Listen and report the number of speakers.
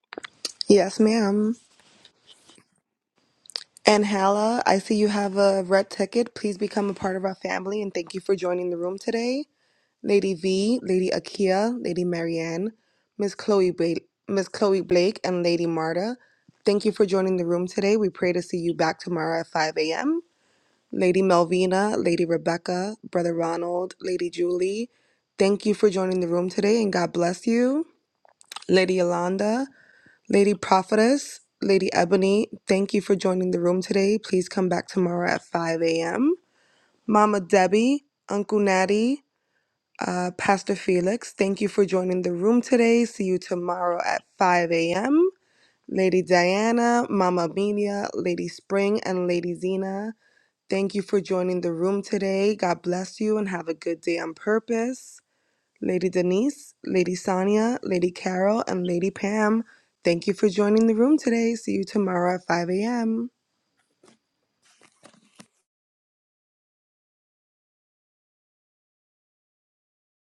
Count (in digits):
1